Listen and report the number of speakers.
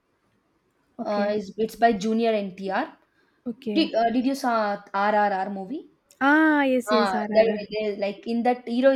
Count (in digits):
2